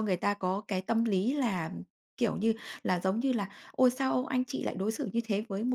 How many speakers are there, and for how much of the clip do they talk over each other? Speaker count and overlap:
one, no overlap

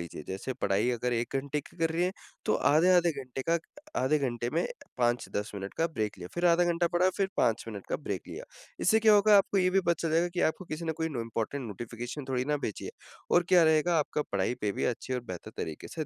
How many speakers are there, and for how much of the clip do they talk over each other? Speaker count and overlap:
one, no overlap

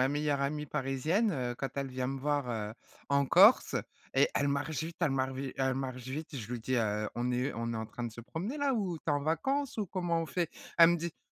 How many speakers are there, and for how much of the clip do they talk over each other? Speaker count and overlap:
one, no overlap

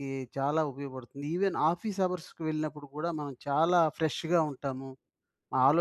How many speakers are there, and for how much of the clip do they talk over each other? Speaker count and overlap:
one, no overlap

